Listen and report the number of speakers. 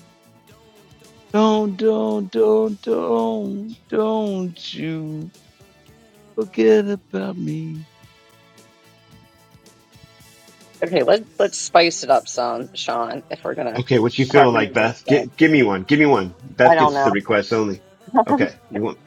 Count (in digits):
3